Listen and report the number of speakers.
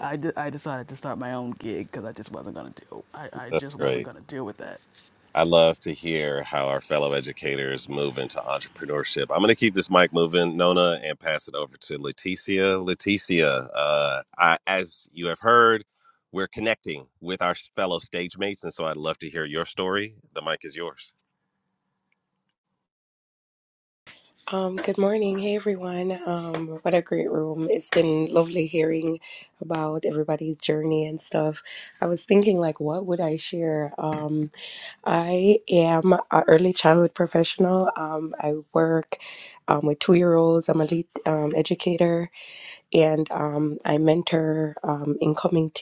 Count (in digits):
3